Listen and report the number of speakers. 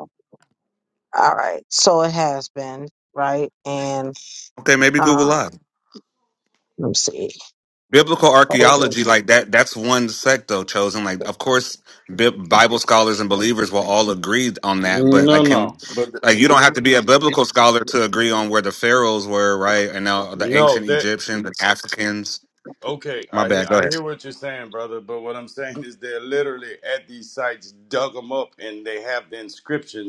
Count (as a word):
three